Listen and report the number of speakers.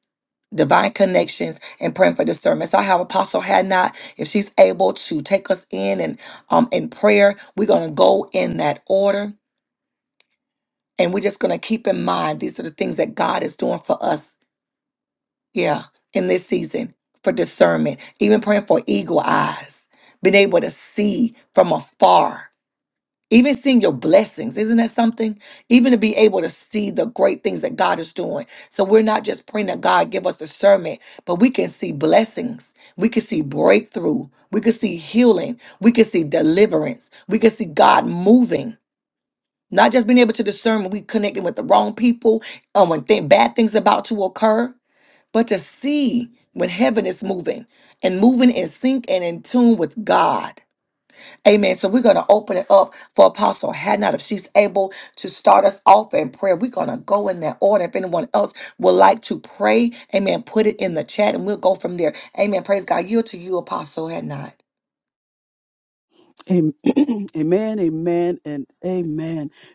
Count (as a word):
two